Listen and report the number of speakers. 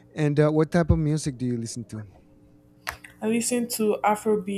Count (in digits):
2